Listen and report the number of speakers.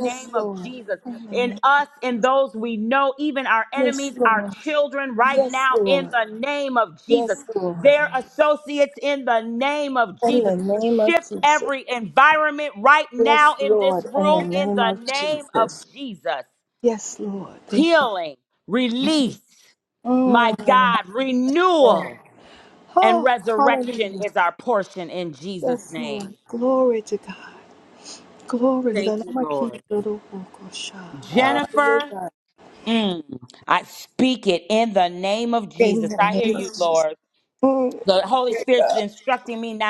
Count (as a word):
two